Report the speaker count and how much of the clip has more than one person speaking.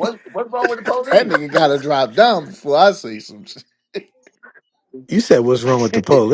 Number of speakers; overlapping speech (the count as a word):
three, about 2%